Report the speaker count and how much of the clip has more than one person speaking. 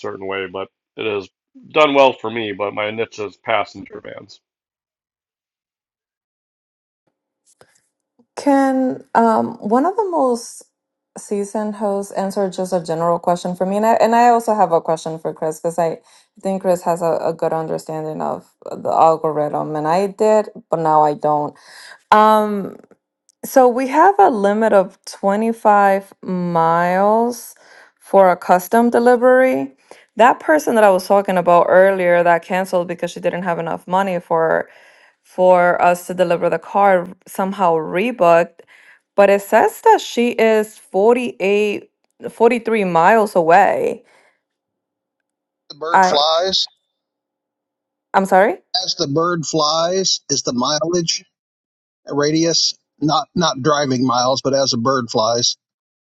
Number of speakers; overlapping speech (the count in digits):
3, about 1%